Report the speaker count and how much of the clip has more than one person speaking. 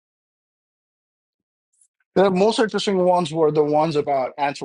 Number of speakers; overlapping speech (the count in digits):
1, no overlap